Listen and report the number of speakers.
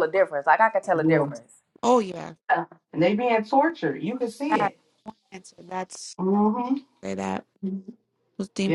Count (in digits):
3